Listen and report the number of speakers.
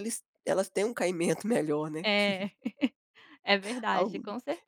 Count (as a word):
two